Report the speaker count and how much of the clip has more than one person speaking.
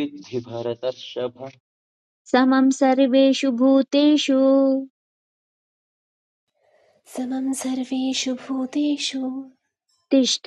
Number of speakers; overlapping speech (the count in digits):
3, no overlap